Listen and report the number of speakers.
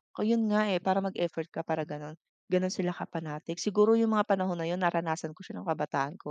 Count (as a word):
one